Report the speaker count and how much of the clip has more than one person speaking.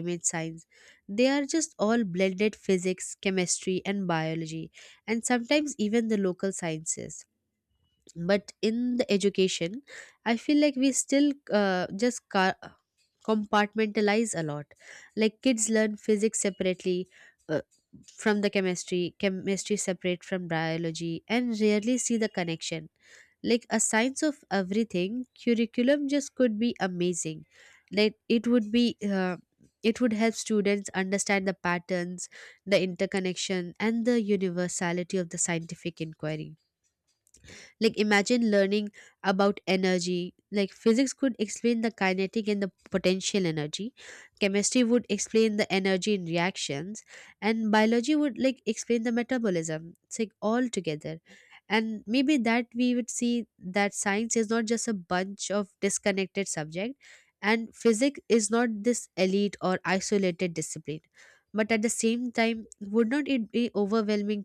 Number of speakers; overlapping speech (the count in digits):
1, no overlap